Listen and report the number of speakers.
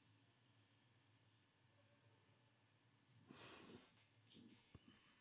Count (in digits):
0